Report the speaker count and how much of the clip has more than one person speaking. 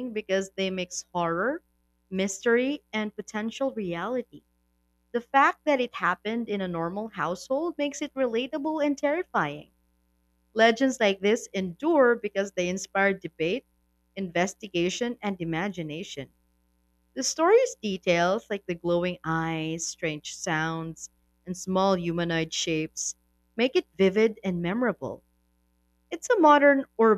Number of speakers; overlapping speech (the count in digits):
1, no overlap